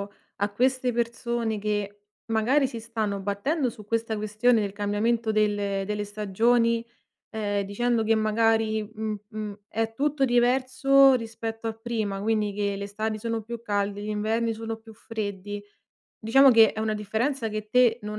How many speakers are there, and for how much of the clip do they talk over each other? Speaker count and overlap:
1, no overlap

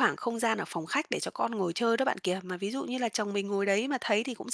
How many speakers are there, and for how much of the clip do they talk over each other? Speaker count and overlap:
1, no overlap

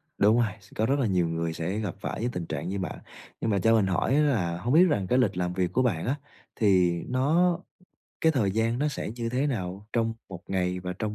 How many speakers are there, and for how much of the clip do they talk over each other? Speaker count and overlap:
1, no overlap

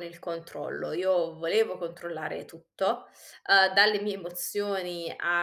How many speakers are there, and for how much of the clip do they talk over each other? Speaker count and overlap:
1, no overlap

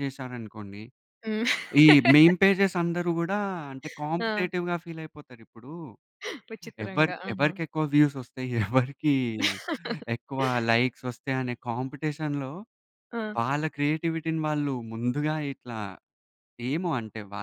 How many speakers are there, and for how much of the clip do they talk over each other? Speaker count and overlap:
2, about 6%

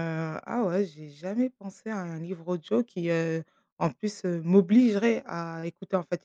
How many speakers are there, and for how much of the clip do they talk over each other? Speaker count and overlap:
1, no overlap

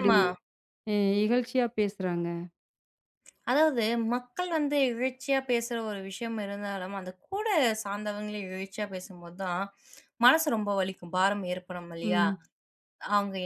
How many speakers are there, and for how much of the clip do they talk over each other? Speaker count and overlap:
2, about 3%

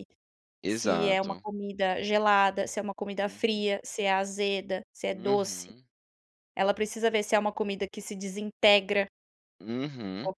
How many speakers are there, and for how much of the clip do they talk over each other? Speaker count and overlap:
2, about 13%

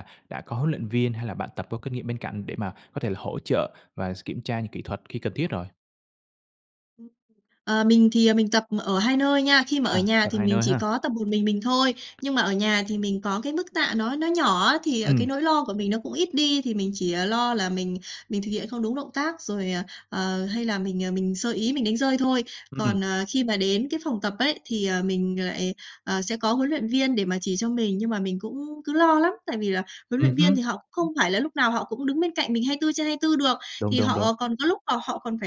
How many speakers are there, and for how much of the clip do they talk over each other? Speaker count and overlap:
2, about 7%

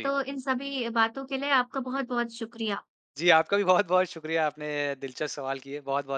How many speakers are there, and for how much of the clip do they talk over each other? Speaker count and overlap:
2, about 1%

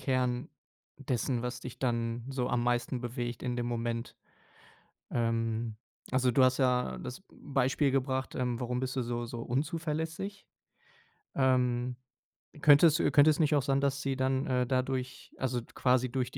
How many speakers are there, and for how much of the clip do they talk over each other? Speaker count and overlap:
1, no overlap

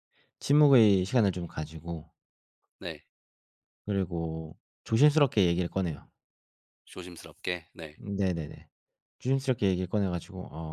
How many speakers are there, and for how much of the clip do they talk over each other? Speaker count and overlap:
2, no overlap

